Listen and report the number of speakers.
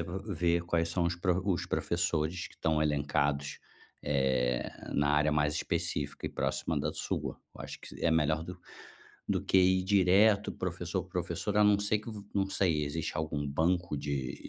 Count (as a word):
one